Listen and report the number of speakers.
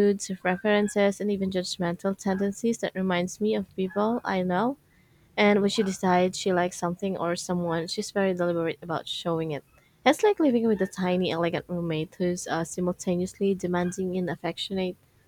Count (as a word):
one